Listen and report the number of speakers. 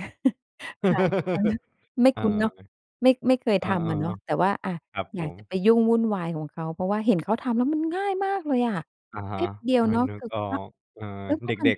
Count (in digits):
2